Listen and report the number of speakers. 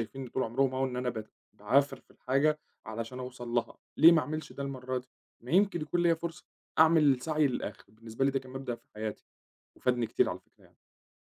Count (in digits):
1